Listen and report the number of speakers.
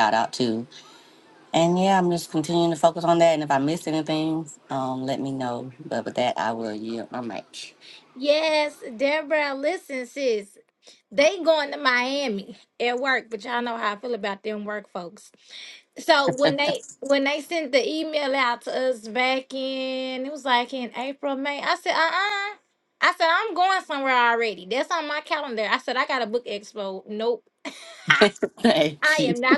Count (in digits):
2